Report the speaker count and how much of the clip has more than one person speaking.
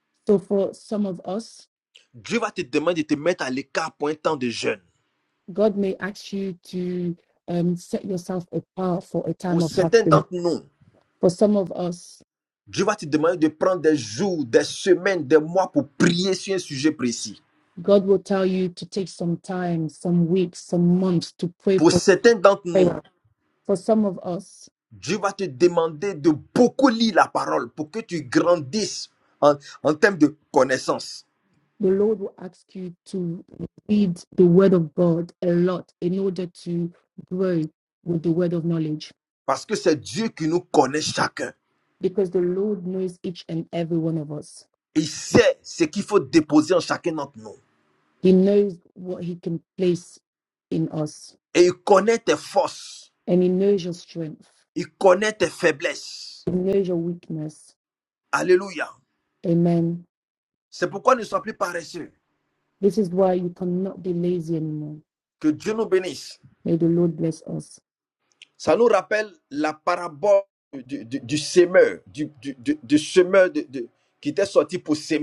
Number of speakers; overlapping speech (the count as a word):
two, about 2%